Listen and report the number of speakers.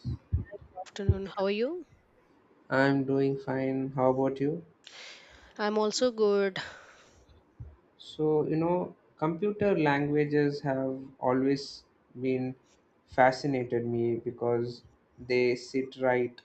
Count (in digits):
2